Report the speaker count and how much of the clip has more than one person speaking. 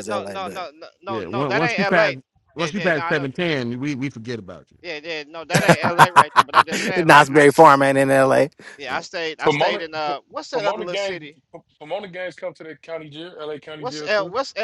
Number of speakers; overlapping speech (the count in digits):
4, about 35%